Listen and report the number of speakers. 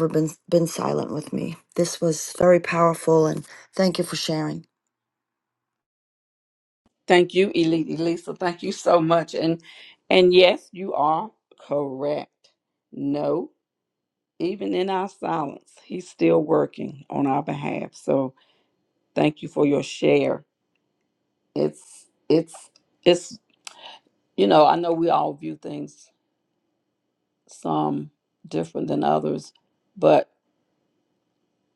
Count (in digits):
2